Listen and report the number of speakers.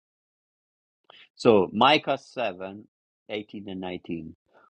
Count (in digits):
1